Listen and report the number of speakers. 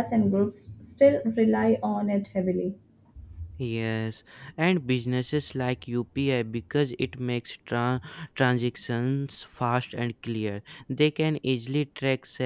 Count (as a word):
two